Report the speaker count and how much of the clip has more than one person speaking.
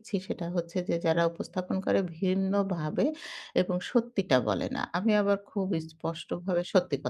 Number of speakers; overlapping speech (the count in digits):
1, no overlap